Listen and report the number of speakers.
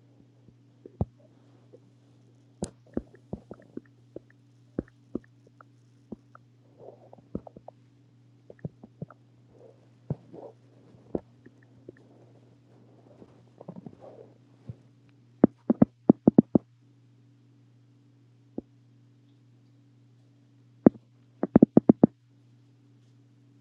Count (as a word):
zero